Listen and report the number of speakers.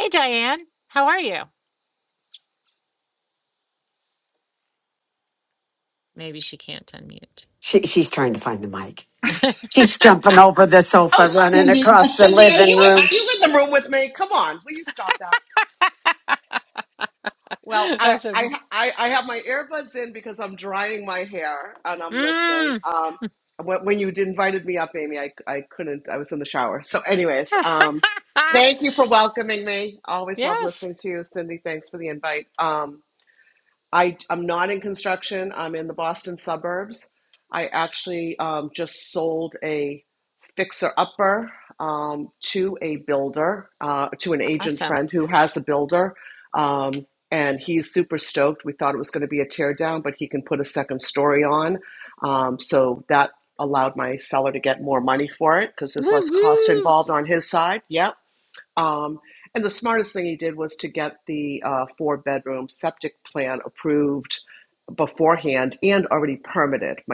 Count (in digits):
3